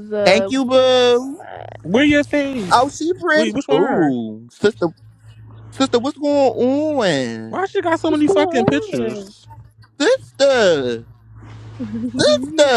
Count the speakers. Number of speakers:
three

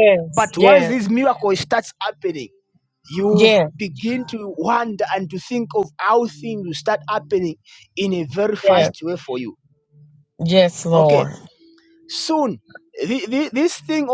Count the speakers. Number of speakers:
two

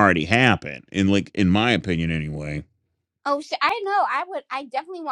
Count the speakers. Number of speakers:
two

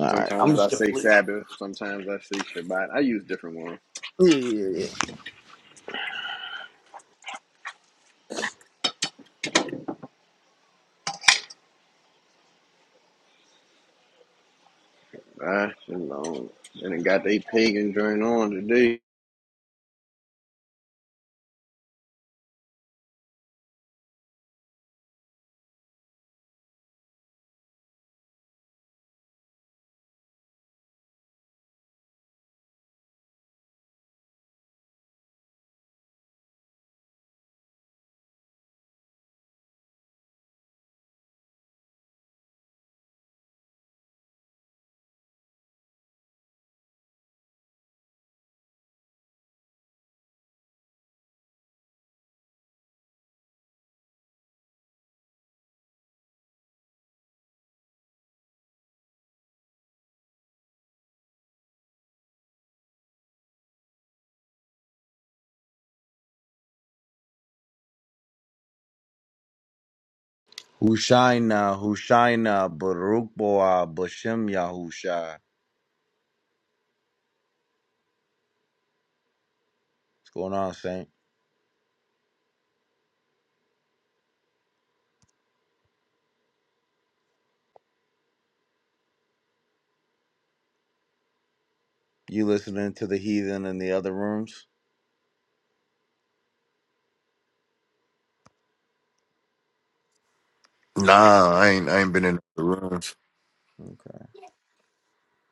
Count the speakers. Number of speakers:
three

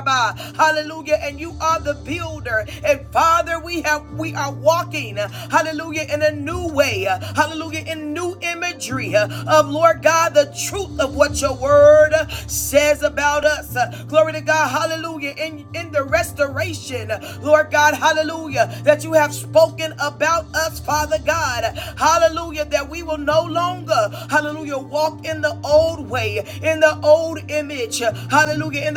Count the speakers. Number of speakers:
one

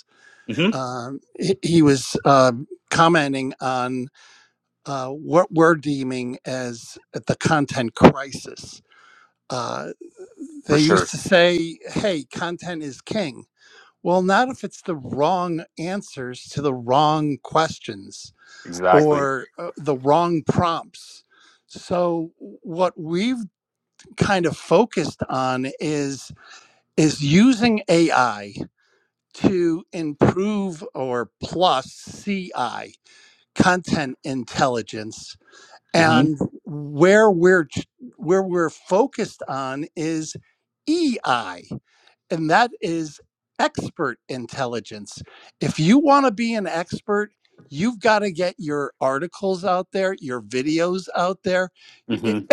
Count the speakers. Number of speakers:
two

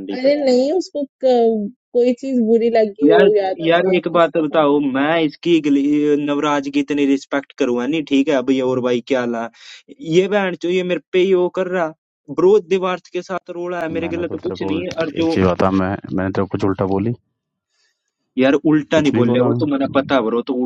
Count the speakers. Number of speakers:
three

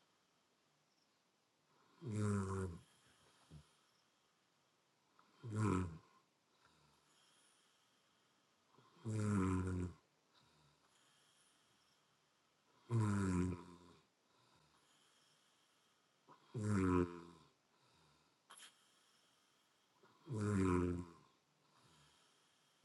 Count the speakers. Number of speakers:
zero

